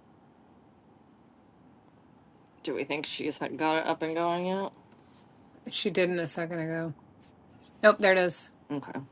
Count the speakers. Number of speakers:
2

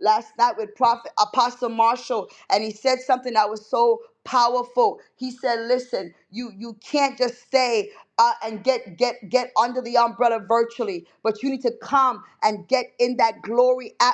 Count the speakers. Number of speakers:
1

